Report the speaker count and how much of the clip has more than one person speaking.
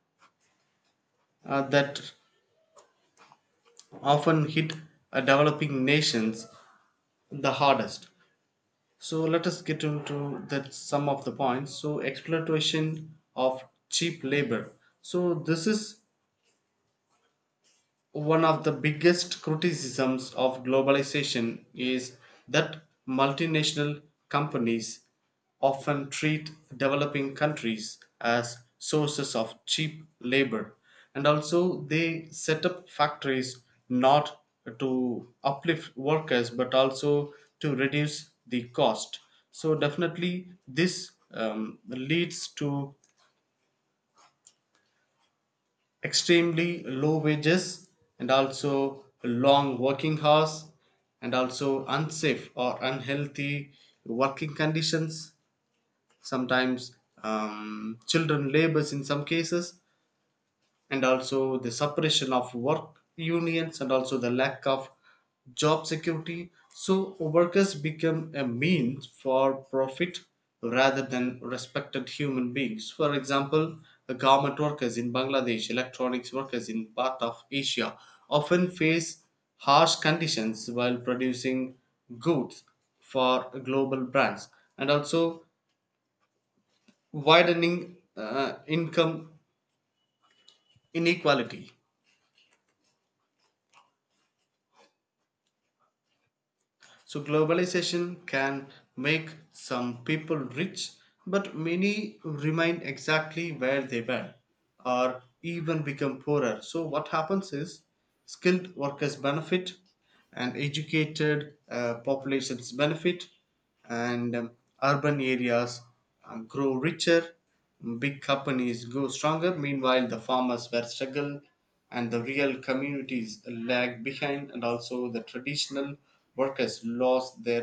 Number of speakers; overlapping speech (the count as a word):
one, no overlap